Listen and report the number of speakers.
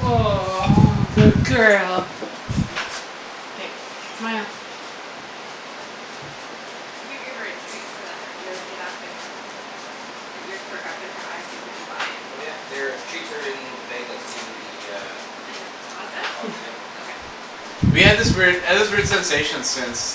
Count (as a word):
four